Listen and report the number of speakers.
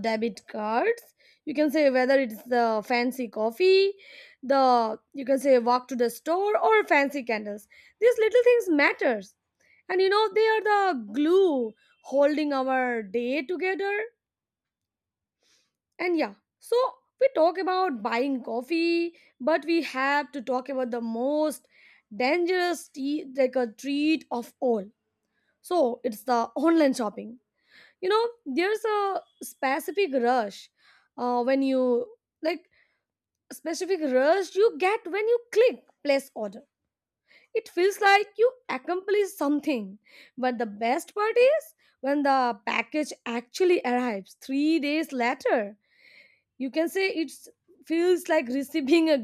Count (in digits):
1